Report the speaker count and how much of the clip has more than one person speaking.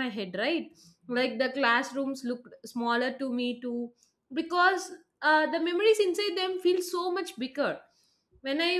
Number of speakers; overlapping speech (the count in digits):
1, no overlap